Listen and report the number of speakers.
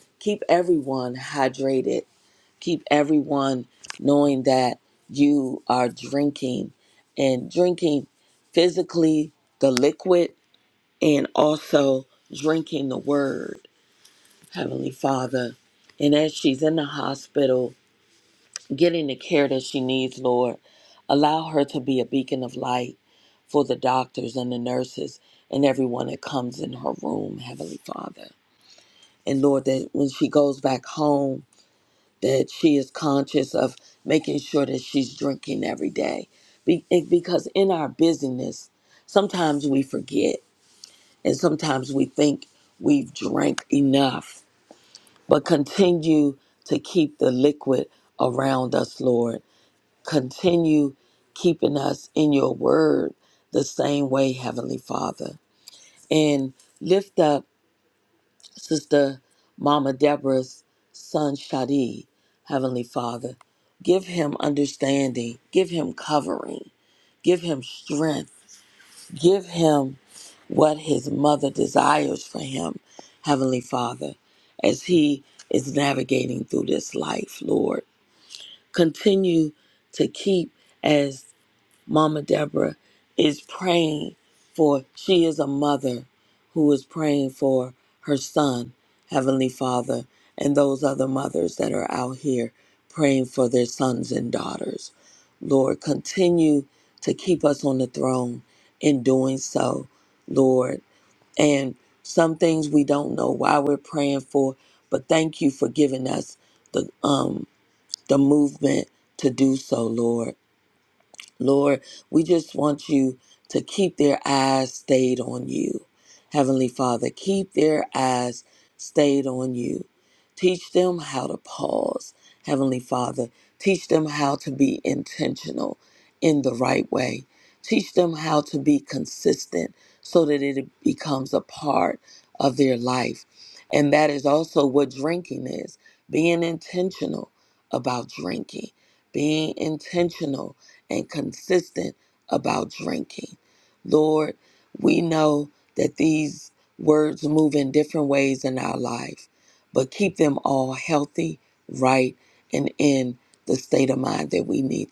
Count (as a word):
one